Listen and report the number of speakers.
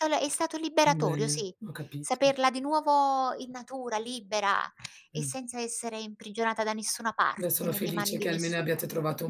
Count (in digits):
2